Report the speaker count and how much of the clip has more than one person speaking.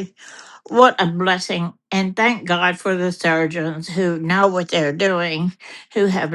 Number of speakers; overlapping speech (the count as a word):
one, no overlap